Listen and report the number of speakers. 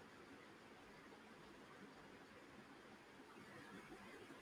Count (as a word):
zero